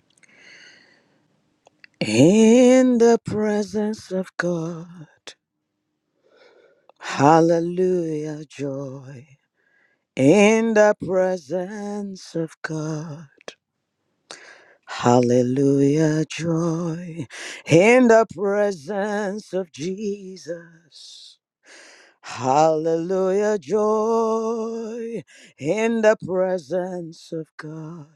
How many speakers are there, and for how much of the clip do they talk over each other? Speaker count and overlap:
one, no overlap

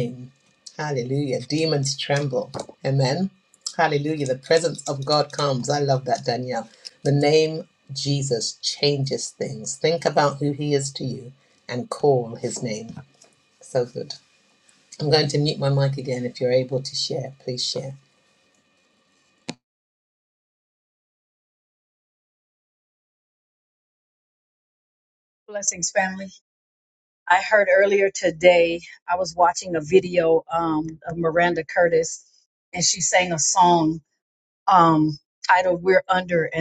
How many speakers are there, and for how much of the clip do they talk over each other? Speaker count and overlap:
two, no overlap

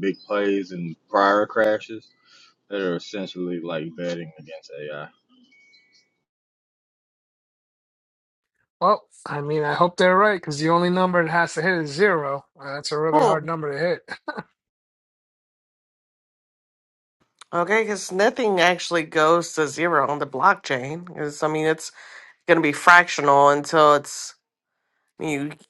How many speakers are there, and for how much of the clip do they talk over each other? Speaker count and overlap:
three, about 1%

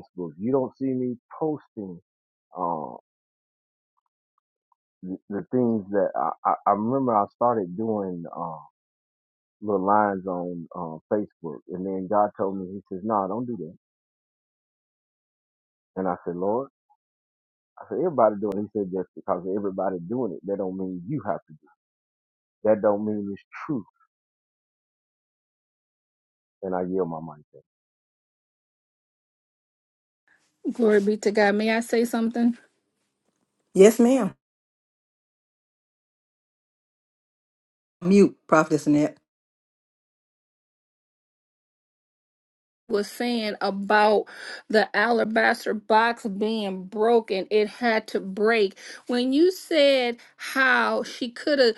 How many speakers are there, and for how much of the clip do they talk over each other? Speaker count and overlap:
three, no overlap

